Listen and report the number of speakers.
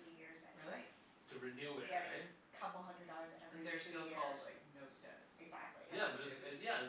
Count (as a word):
three